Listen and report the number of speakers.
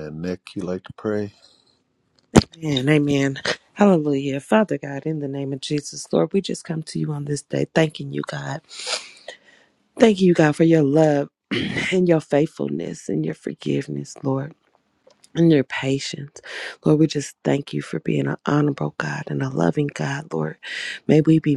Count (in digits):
2